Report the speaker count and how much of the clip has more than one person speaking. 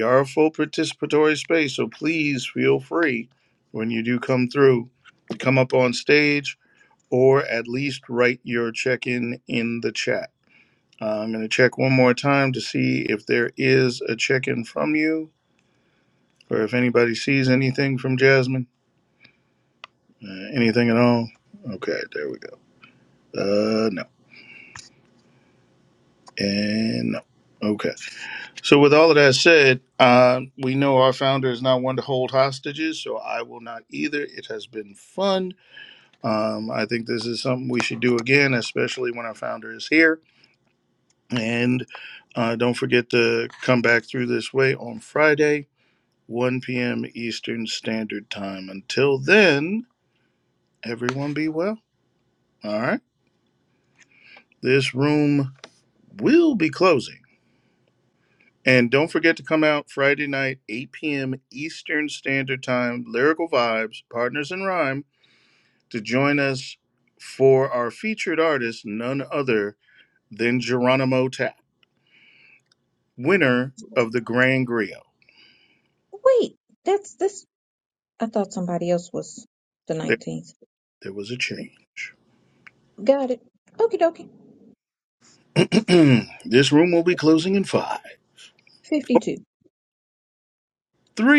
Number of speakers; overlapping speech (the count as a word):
two, under 1%